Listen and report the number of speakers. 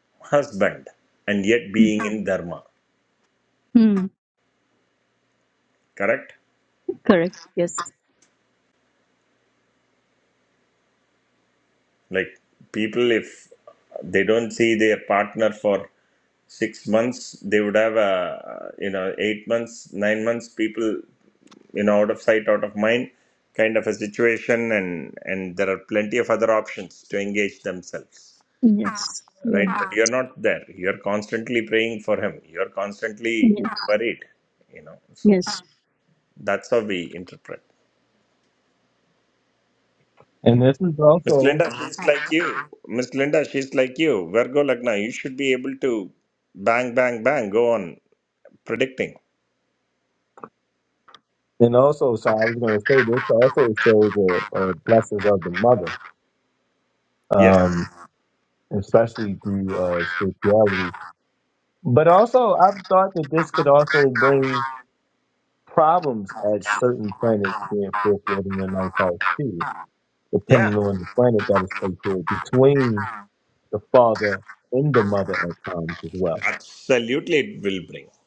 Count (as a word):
three